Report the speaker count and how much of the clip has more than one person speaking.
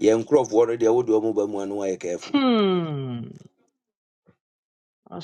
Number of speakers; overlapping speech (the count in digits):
2, about 3%